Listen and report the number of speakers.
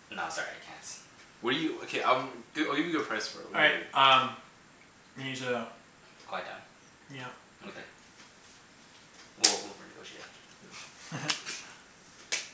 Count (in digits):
3